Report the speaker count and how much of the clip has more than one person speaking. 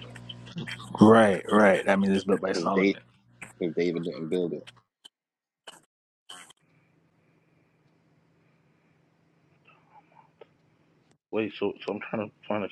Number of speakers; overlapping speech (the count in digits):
3, about 3%